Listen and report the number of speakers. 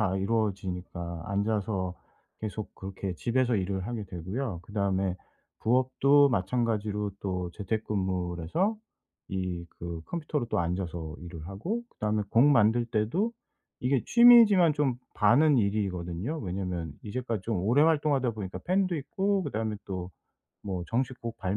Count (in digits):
1